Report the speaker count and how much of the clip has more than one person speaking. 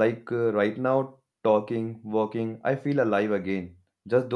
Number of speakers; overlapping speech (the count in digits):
1, no overlap